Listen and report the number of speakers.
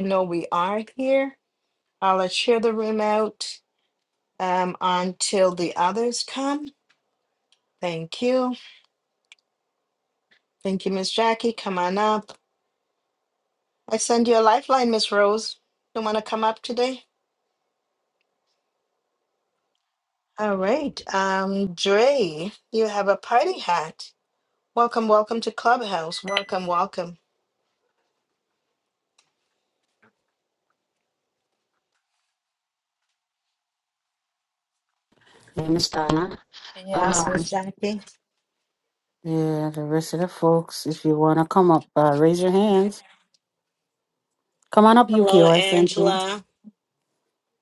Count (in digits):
2